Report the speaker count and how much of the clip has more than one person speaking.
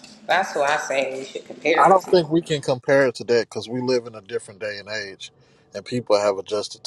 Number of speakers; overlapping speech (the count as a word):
two, about 7%